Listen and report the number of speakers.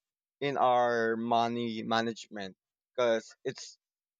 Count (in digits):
1